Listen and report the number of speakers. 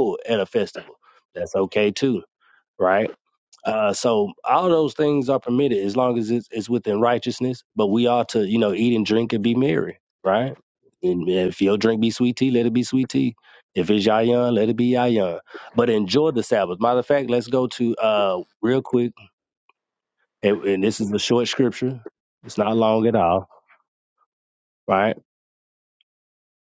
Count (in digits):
1